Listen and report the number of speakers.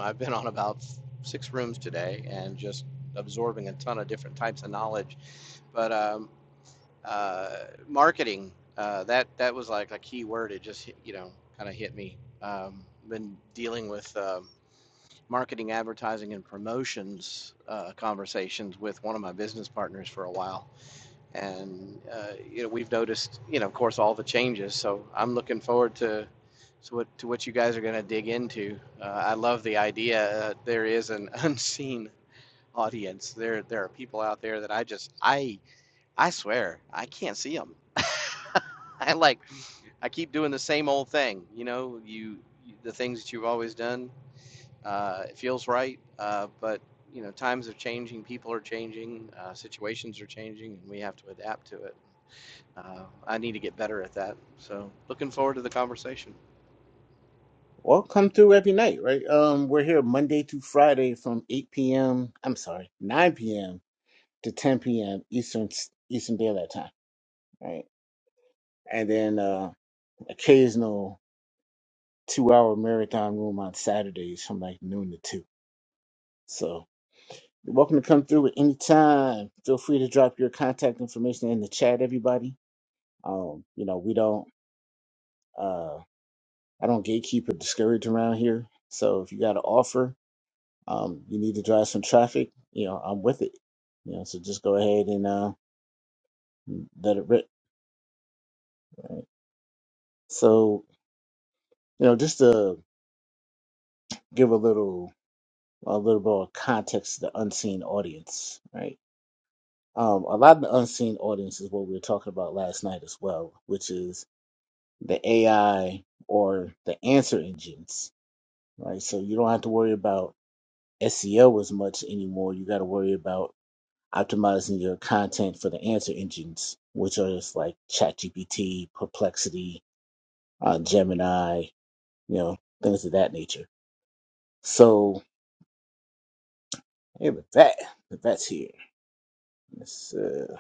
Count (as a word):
two